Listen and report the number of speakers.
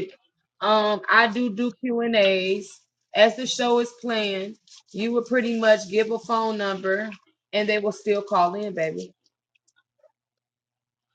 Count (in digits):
1